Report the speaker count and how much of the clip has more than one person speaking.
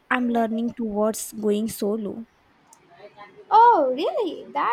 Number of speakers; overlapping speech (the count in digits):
2, no overlap